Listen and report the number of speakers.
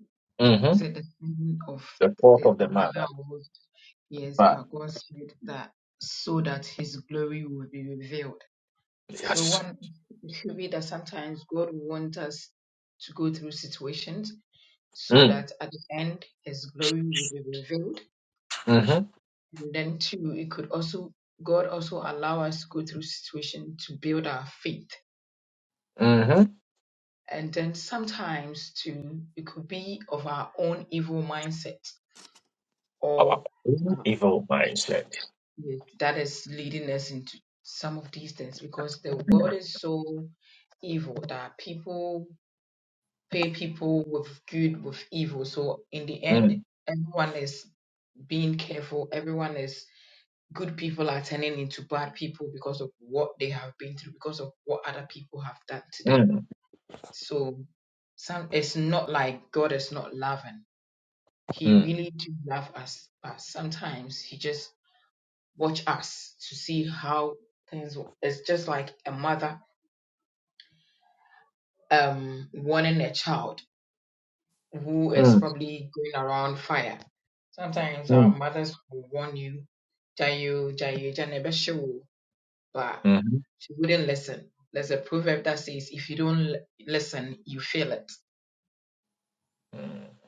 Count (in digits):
2